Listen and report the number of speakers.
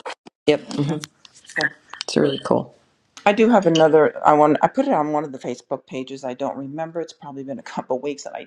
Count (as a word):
two